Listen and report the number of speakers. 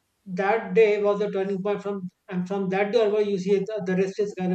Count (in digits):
1